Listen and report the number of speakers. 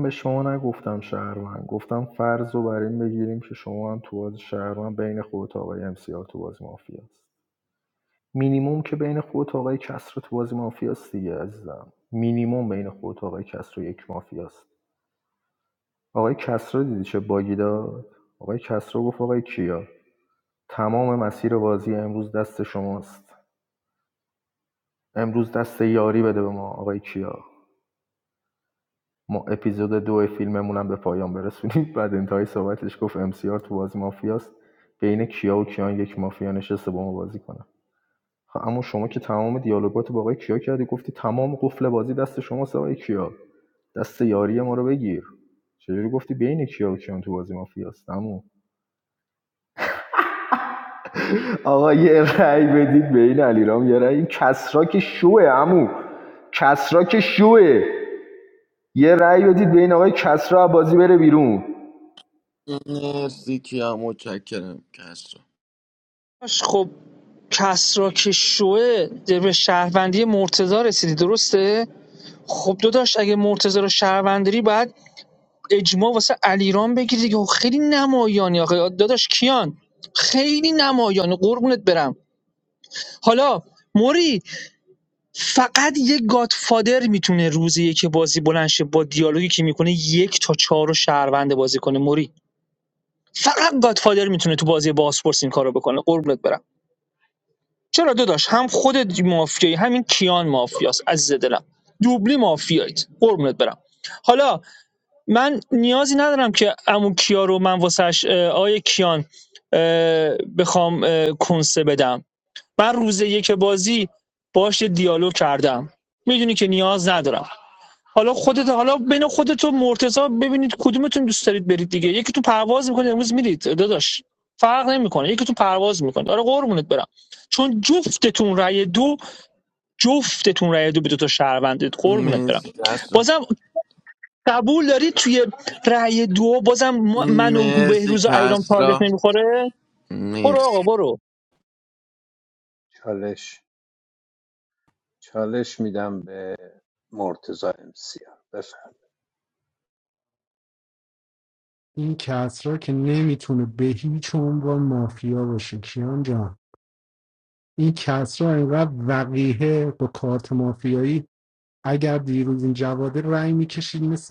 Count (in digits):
5